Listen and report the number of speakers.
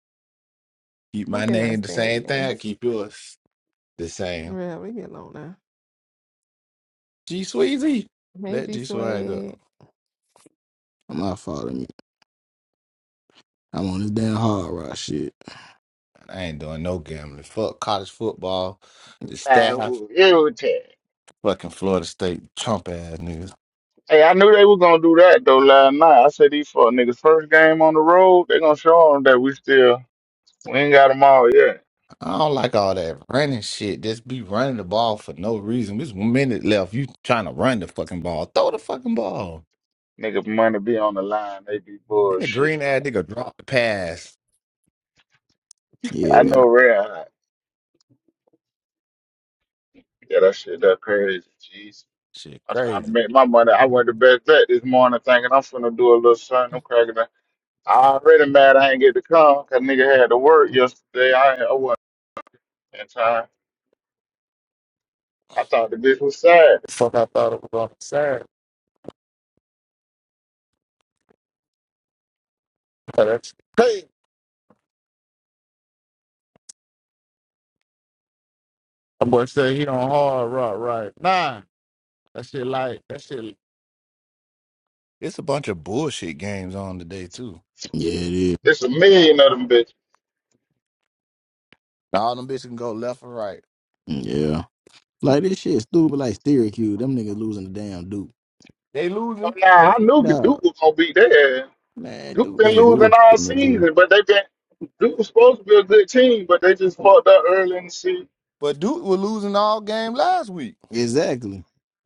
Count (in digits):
4